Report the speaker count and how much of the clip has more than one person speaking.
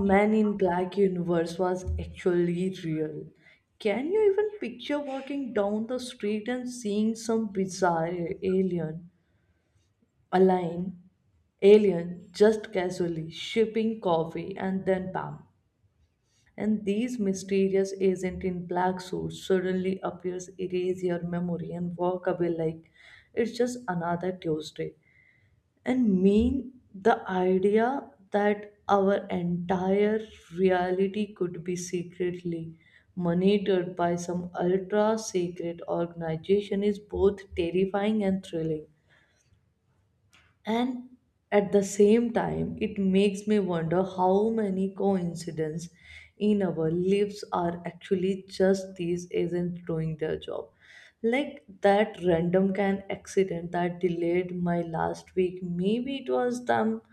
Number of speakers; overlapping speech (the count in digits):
1, no overlap